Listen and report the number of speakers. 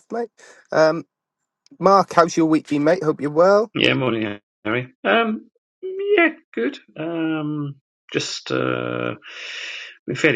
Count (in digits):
2